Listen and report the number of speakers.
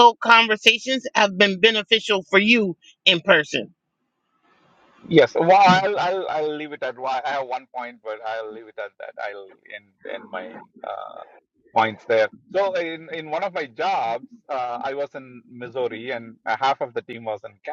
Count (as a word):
two